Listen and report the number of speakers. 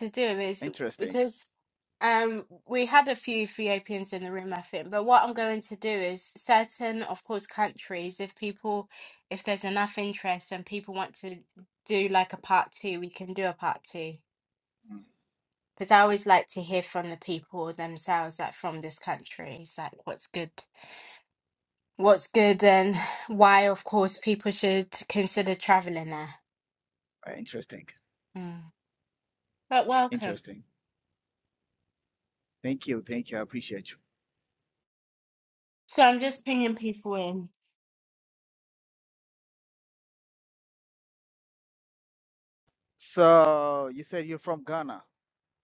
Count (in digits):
2